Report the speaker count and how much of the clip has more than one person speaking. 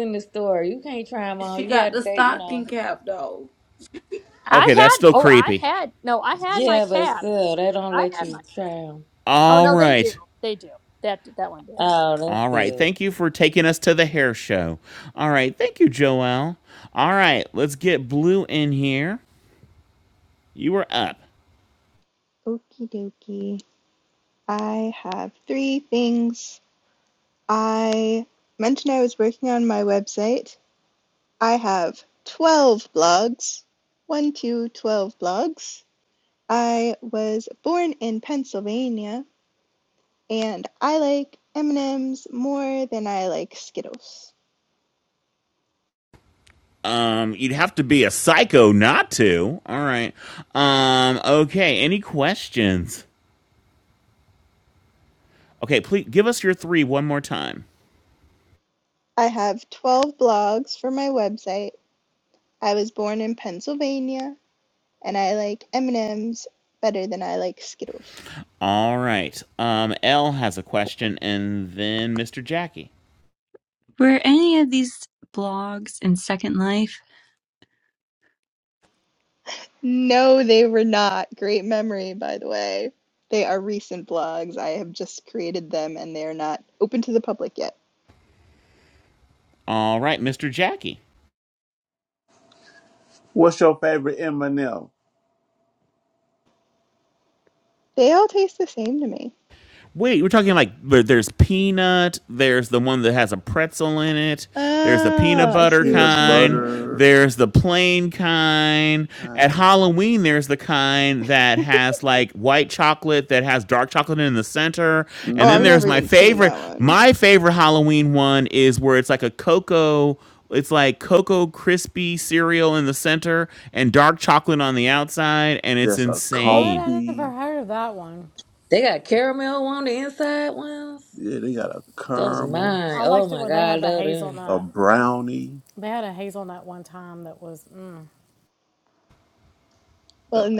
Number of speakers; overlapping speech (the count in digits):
8, about 9%